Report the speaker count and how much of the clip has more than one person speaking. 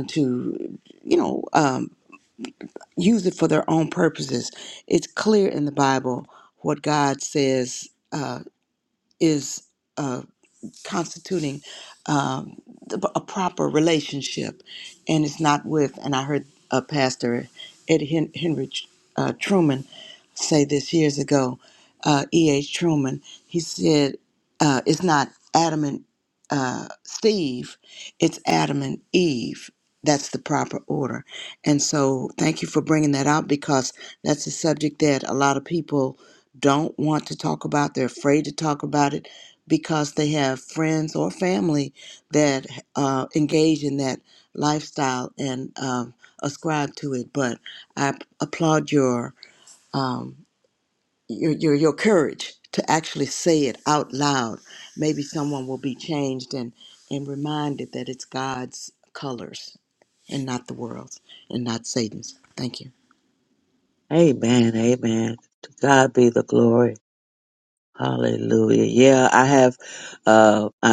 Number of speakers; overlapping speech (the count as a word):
two, no overlap